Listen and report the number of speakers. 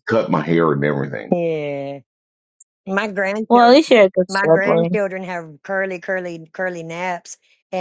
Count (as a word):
three